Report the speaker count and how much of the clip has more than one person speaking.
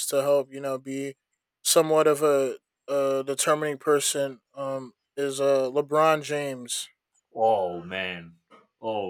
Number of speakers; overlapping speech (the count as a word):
two, no overlap